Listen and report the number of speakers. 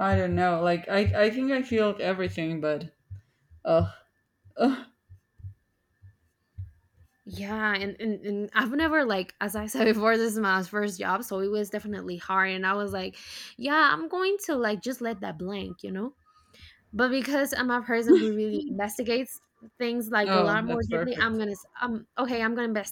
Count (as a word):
two